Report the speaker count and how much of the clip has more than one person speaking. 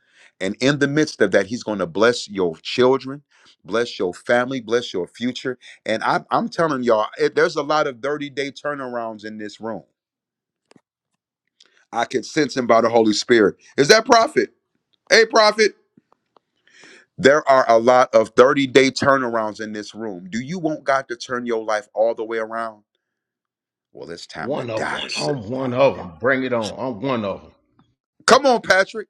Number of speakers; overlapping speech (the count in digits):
2, about 3%